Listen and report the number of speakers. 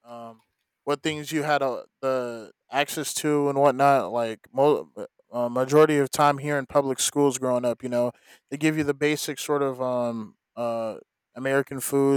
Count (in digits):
1